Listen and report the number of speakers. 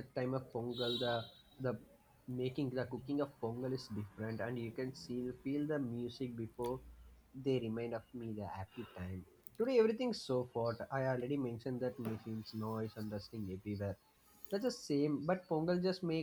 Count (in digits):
1